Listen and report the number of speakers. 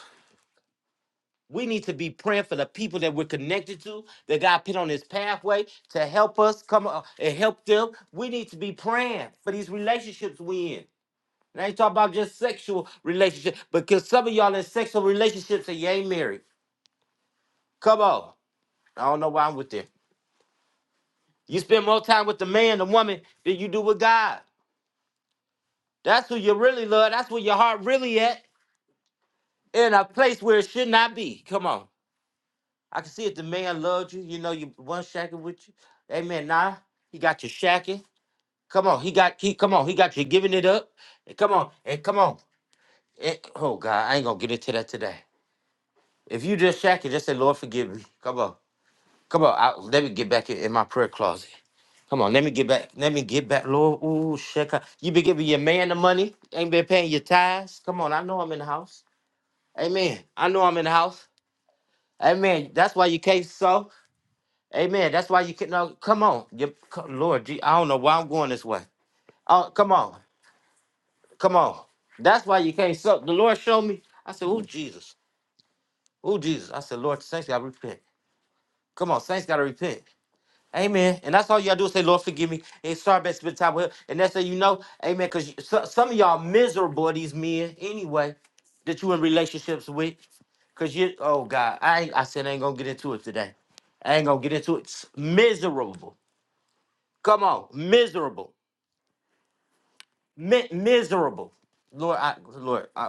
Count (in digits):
1